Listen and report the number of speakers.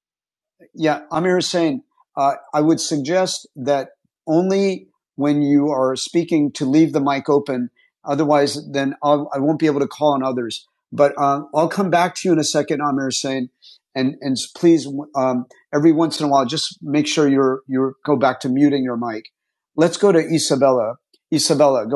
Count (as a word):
one